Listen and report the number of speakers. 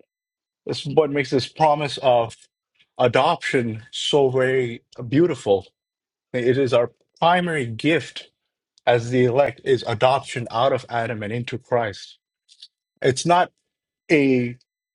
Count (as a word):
one